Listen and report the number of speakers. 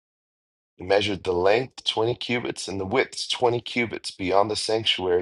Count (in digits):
1